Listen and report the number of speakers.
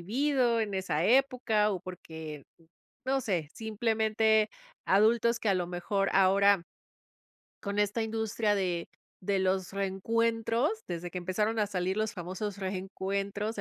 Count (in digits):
1